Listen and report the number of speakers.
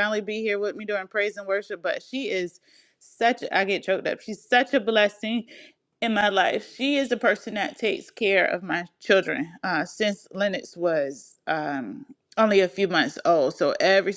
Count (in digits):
1